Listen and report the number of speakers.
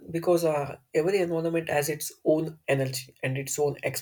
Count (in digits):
1